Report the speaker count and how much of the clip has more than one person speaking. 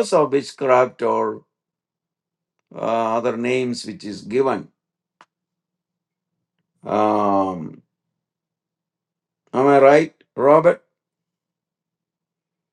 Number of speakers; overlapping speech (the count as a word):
one, no overlap